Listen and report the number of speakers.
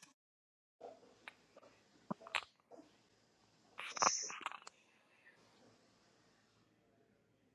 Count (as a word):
zero